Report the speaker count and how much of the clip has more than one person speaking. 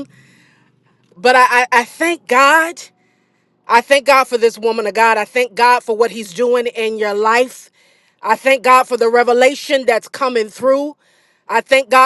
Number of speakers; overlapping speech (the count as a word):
one, no overlap